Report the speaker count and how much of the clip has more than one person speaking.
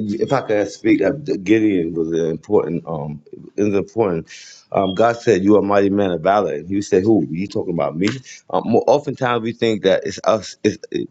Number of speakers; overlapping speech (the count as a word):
one, no overlap